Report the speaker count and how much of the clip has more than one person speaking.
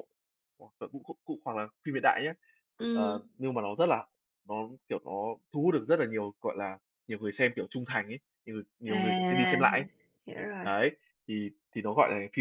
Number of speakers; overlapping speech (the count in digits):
2, about 10%